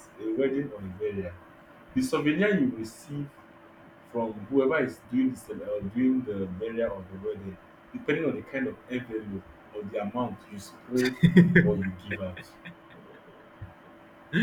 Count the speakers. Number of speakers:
one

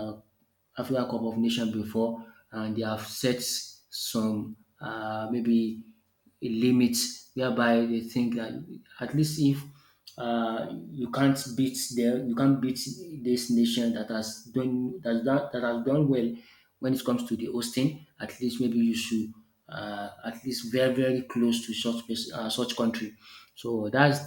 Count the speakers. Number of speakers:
one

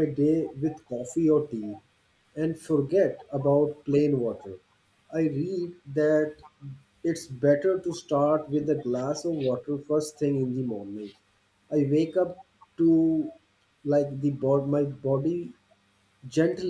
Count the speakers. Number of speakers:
one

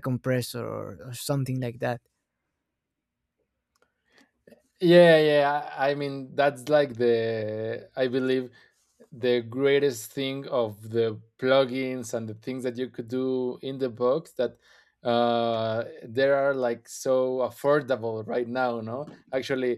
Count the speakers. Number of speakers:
two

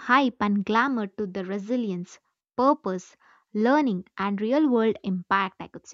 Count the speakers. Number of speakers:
one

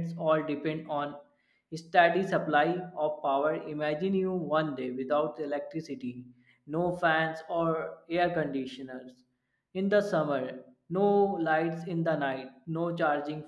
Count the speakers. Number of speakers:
one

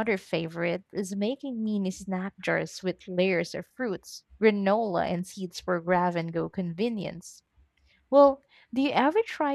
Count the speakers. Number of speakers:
one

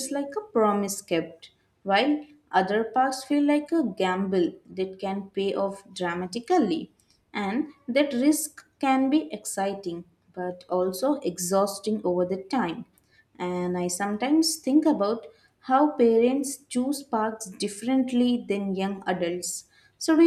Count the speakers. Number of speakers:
one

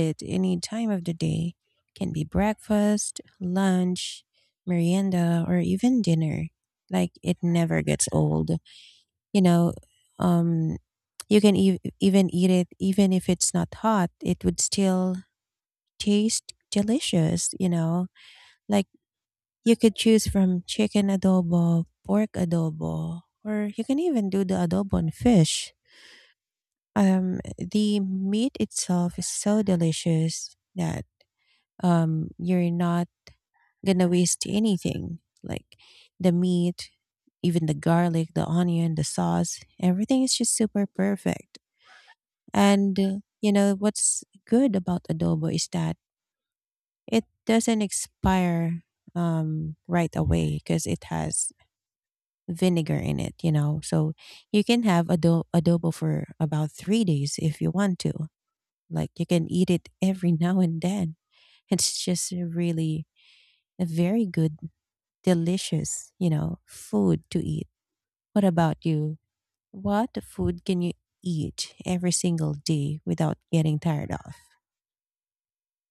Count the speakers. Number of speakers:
one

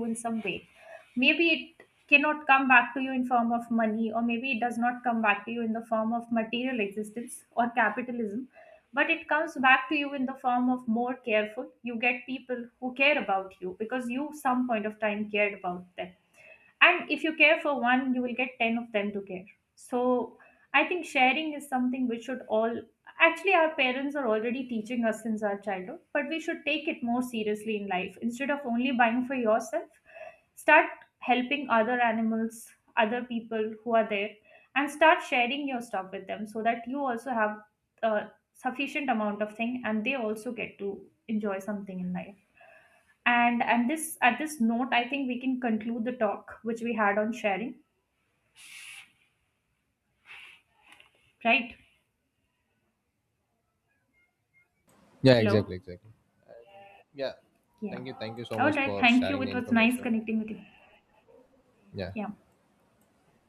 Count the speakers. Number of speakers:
two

